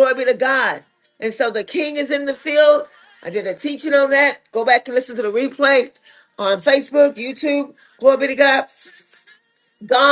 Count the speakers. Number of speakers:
1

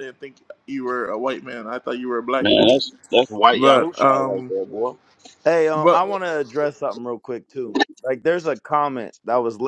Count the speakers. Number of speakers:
3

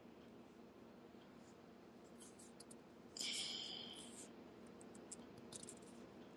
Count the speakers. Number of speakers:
0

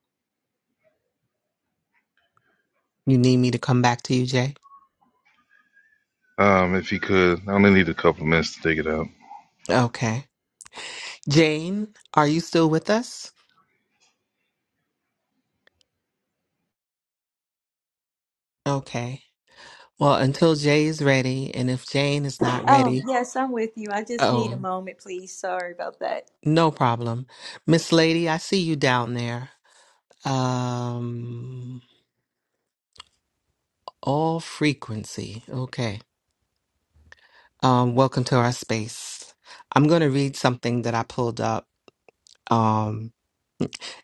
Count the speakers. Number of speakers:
3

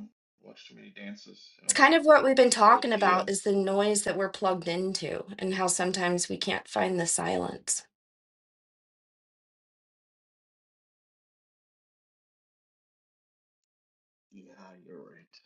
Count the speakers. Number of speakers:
2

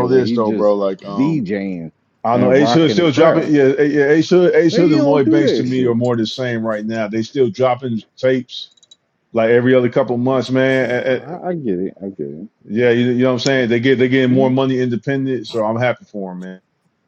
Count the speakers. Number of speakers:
2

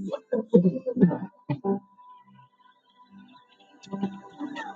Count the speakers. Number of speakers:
0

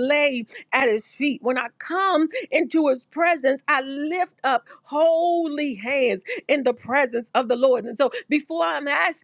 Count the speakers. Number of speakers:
1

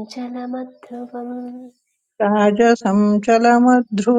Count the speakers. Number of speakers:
2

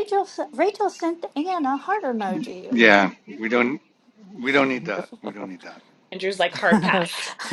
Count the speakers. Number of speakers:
3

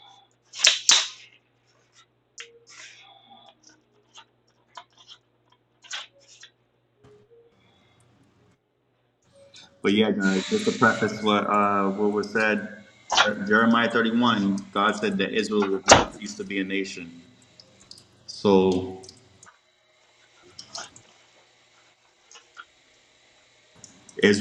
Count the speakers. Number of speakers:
1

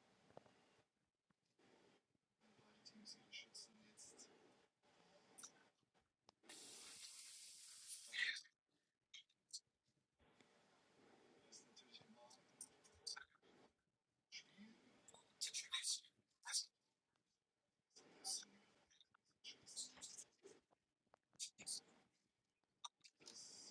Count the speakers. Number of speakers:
0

